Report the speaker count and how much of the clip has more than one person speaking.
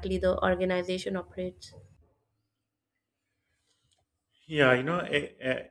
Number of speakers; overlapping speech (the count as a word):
two, no overlap